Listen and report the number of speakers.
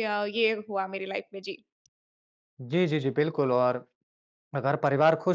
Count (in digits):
2